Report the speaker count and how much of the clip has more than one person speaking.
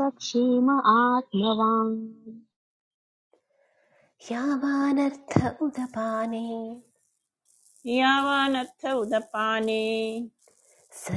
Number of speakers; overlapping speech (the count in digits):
3, no overlap